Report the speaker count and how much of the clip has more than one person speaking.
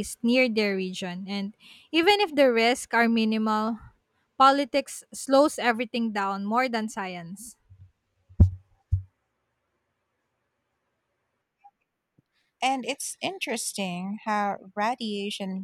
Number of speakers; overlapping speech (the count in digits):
2, no overlap